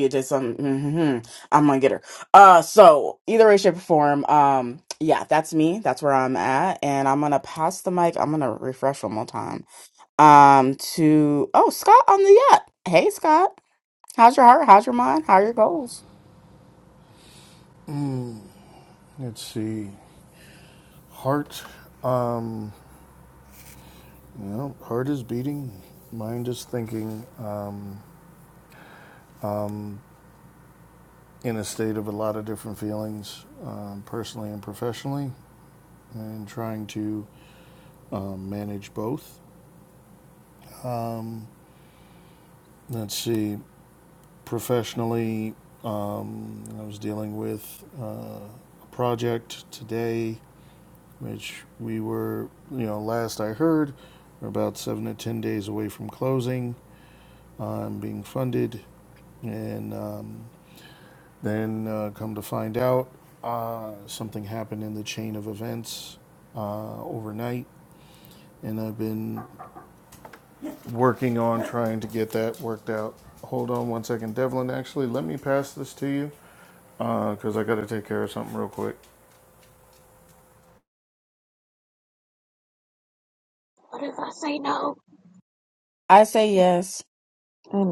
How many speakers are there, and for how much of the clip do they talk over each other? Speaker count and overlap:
three, no overlap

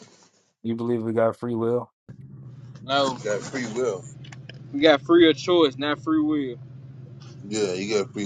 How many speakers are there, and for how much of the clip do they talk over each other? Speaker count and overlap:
three, about 1%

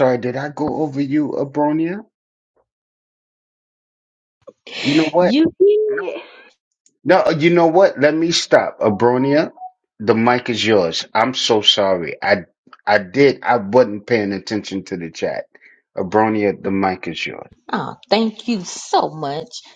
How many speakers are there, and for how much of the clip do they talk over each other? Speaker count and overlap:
two, about 2%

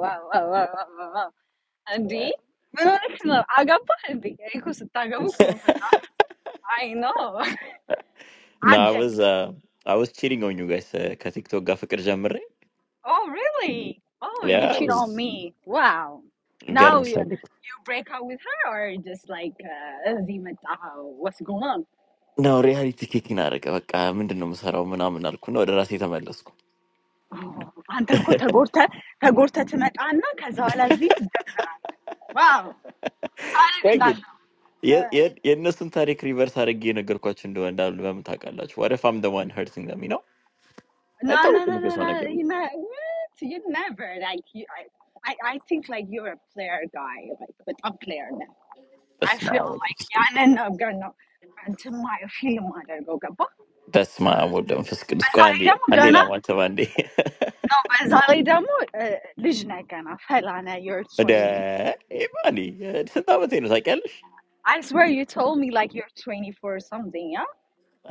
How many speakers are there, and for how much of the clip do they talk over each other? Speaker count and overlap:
two, about 7%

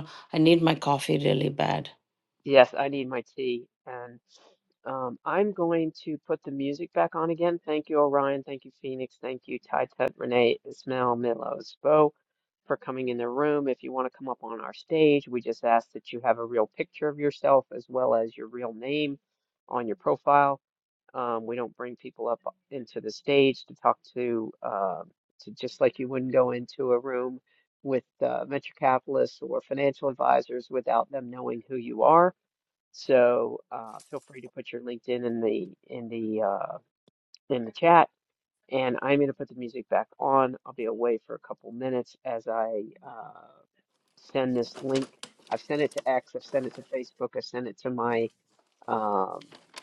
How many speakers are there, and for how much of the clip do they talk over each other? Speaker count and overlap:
two, no overlap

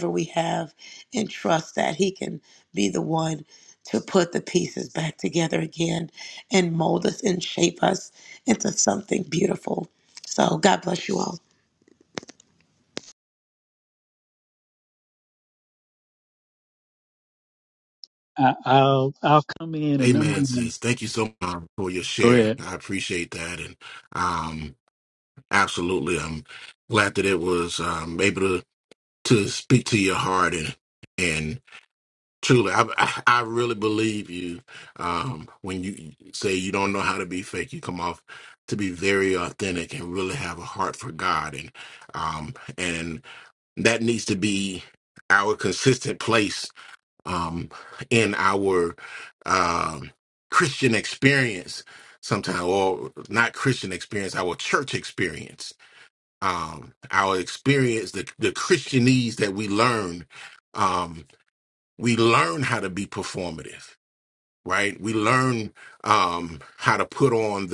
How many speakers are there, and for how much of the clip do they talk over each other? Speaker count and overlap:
three, about 2%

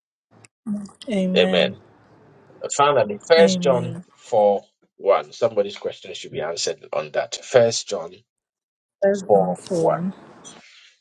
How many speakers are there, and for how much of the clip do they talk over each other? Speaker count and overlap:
two, about 12%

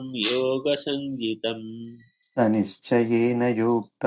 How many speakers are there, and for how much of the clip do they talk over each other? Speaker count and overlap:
two, no overlap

